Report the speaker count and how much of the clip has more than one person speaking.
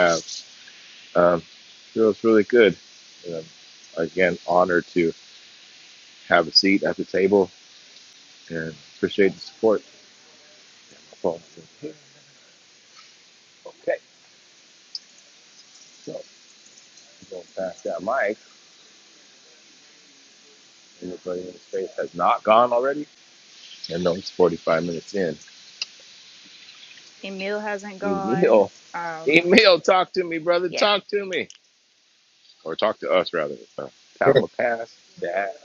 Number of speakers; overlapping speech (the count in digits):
2, about 3%